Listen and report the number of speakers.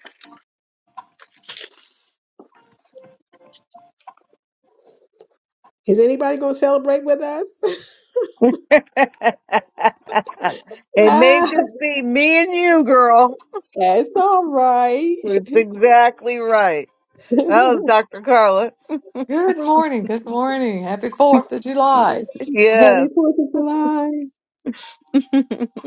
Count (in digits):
3